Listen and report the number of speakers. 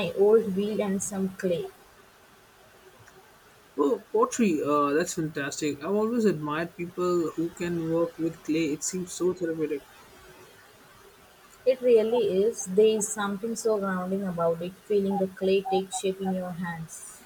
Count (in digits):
2